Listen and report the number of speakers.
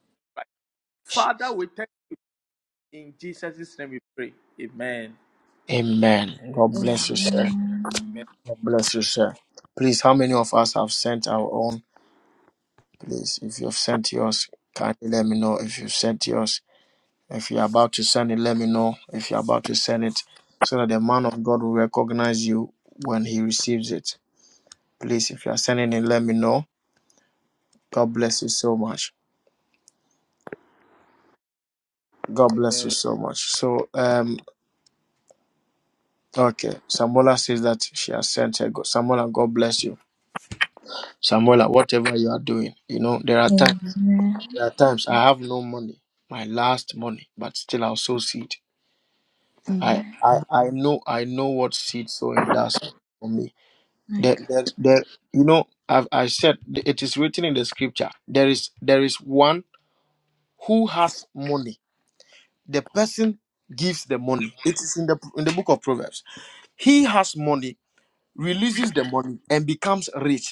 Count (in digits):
3